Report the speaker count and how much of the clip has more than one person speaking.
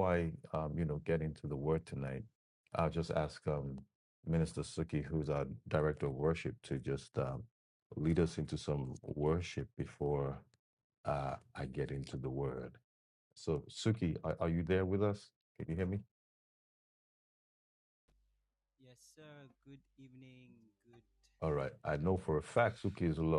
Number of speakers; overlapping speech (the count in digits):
2, no overlap